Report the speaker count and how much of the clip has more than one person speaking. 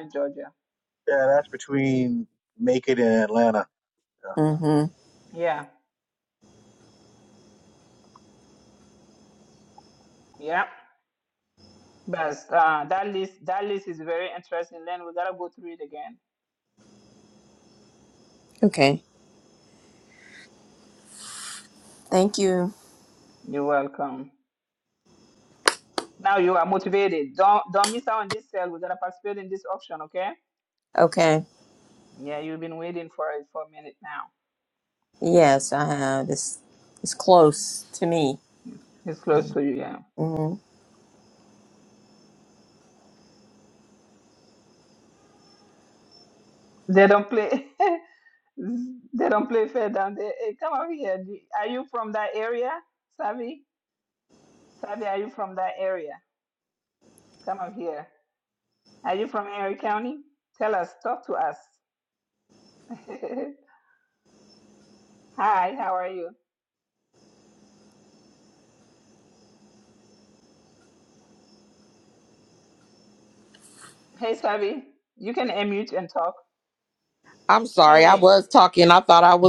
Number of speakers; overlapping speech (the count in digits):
4, about 1%